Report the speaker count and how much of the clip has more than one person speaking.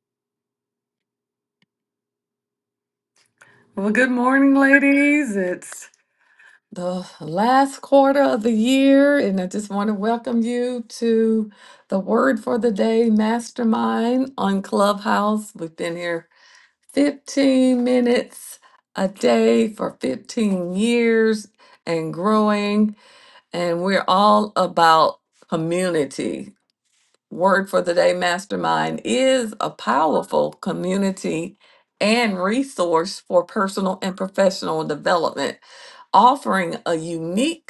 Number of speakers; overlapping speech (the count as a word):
one, no overlap